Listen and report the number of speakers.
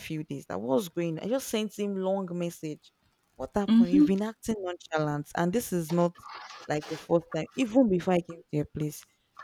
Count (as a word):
one